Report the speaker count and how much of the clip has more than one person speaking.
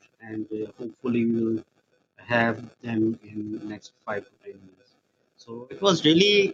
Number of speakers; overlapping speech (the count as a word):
one, no overlap